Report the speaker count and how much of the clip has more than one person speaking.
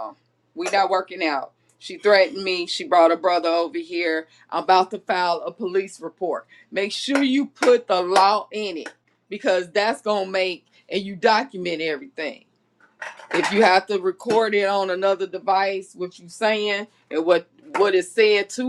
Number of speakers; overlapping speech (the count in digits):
1, no overlap